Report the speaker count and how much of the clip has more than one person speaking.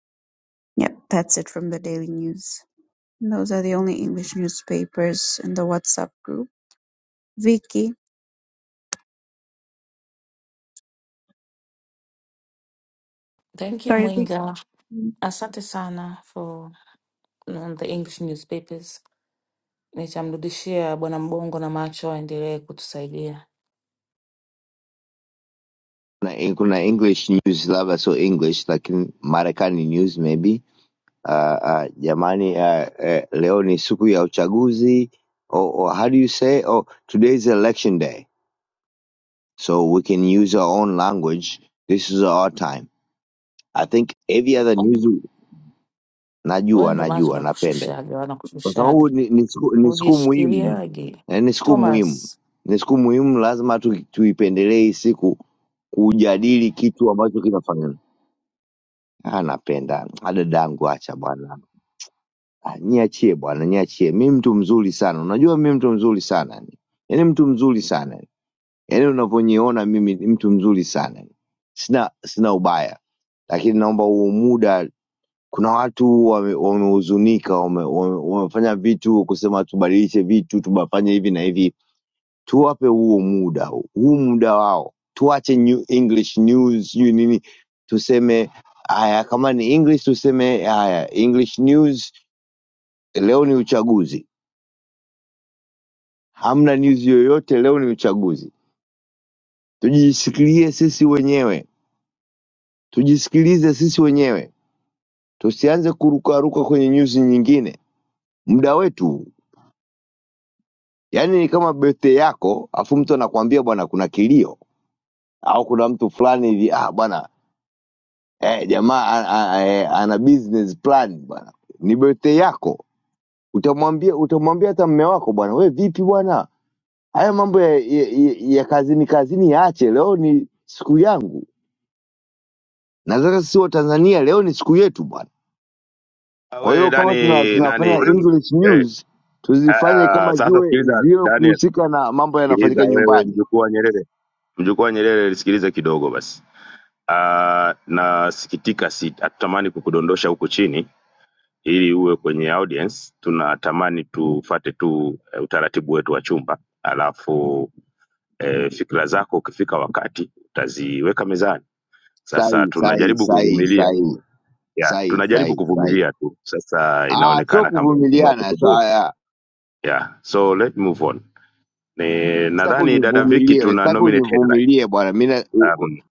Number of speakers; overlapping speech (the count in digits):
4, about 8%